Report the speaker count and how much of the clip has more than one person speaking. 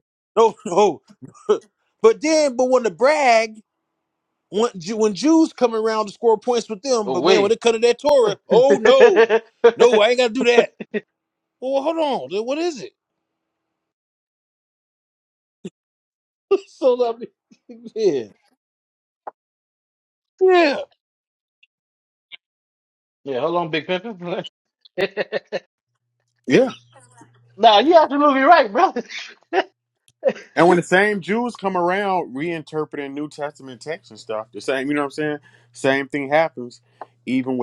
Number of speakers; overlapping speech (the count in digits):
3, about 3%